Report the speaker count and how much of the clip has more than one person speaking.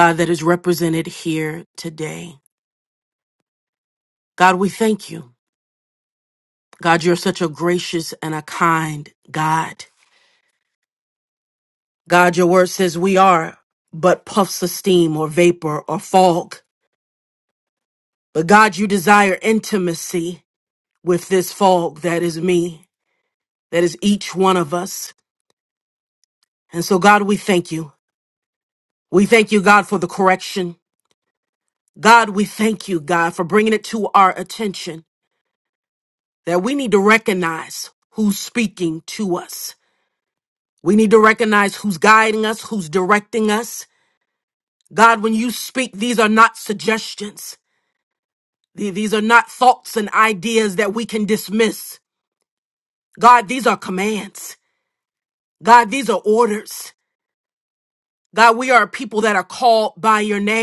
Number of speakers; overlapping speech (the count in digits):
1, no overlap